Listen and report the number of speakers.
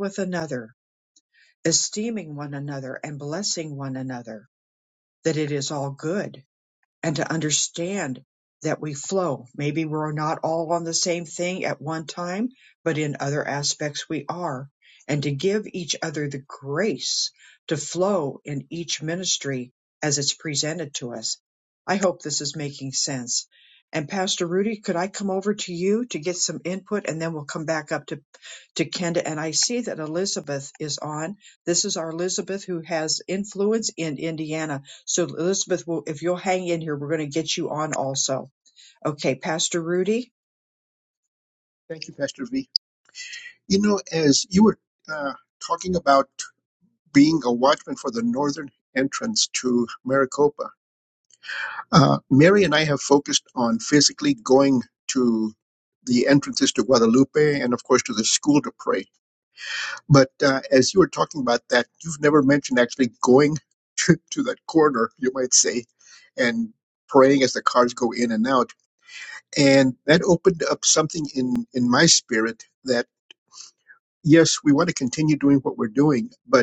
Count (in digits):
2